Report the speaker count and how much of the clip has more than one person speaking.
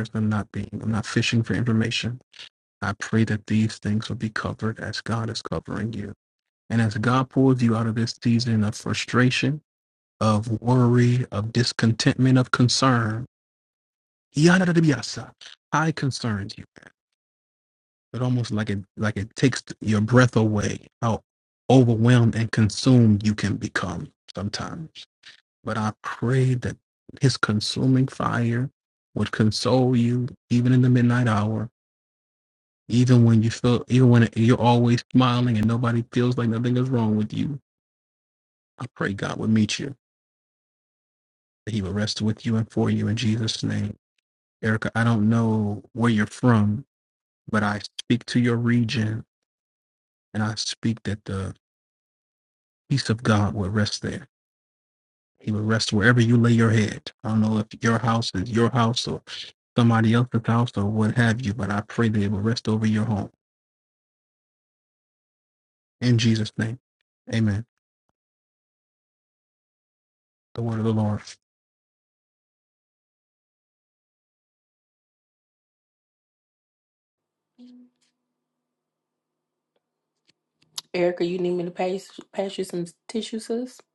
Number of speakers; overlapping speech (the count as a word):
two, no overlap